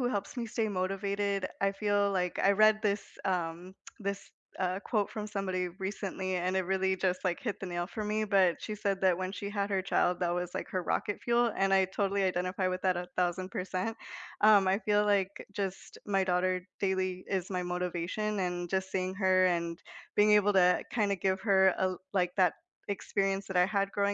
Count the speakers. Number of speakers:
1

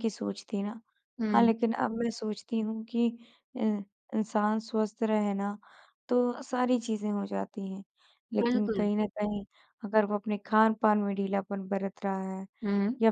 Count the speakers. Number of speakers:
2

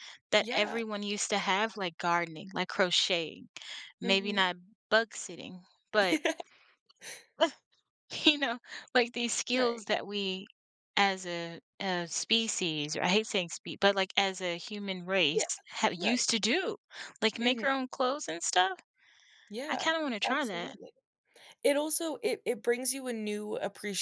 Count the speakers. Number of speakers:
2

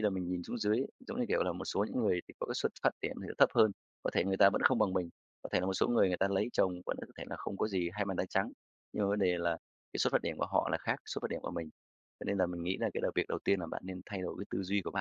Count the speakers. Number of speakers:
1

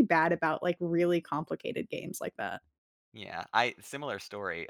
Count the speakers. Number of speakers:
2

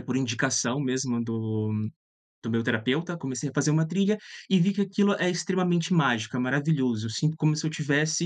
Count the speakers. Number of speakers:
1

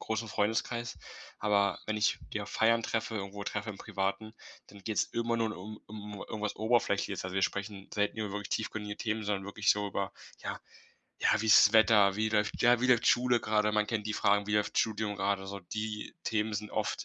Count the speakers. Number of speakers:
1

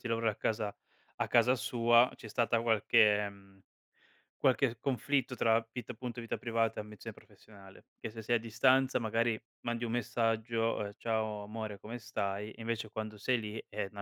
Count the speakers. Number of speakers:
1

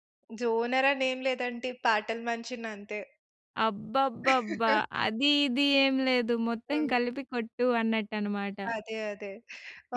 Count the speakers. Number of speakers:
2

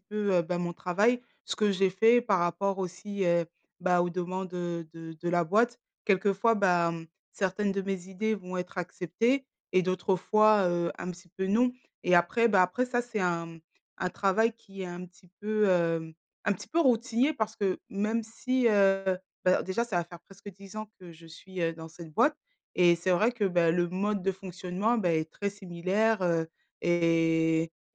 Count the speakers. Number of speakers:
1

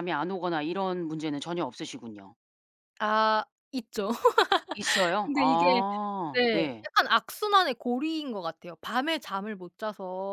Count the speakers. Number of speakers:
2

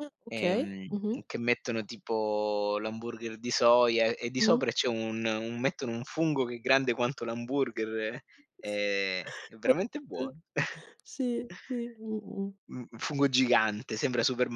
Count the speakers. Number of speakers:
2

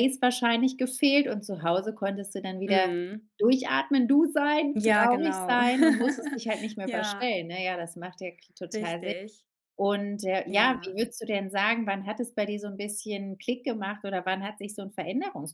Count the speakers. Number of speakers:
2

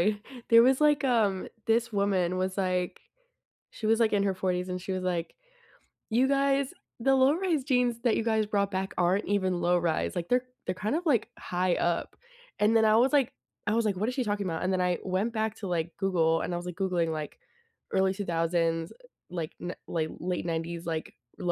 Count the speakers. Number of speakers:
1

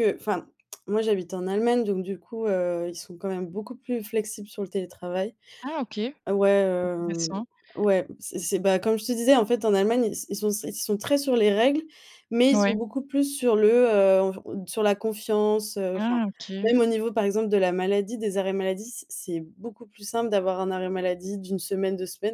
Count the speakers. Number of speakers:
2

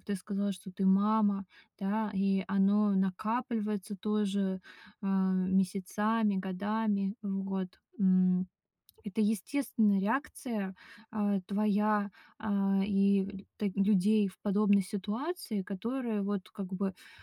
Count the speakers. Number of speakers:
1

